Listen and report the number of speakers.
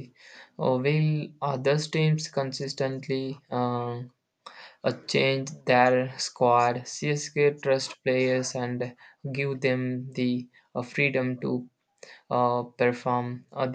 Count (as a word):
one